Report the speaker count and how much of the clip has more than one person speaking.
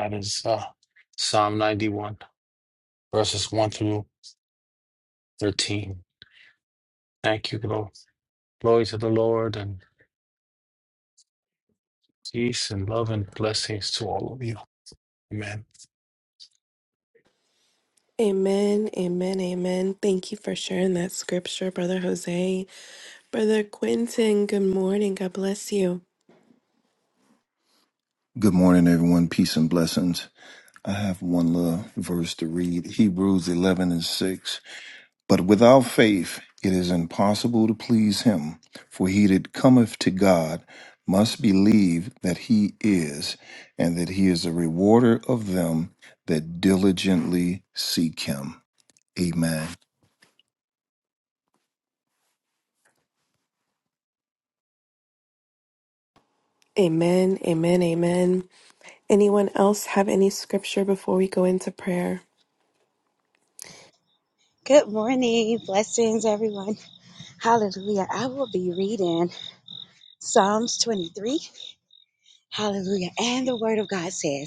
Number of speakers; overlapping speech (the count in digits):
4, no overlap